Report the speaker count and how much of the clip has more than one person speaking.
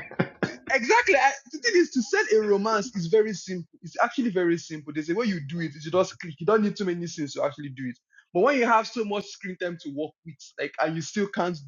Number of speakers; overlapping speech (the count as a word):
one, no overlap